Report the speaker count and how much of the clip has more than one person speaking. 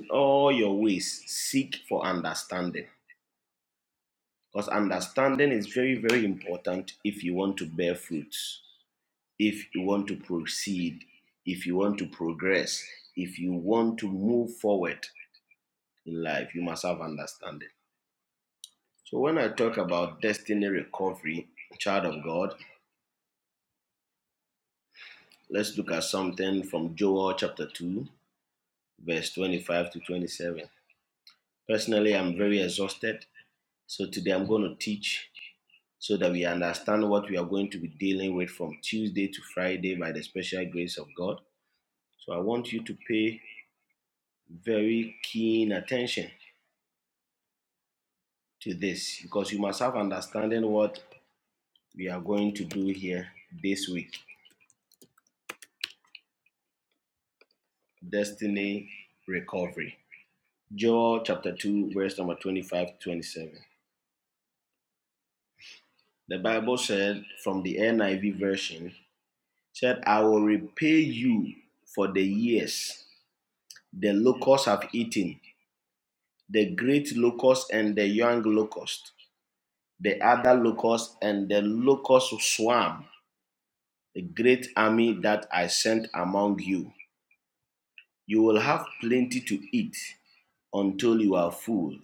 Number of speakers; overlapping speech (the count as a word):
one, no overlap